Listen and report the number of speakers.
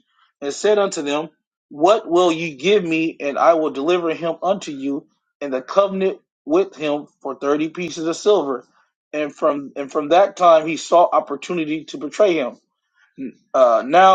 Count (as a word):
one